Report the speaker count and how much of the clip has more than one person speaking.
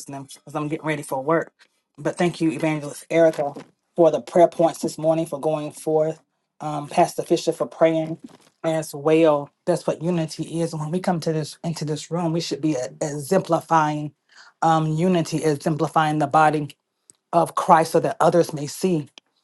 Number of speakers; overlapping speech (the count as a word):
one, no overlap